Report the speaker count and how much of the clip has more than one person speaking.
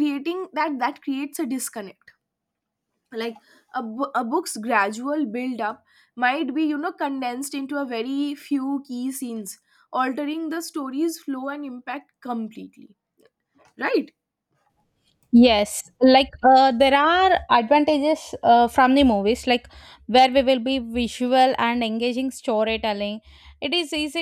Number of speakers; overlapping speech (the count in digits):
2, no overlap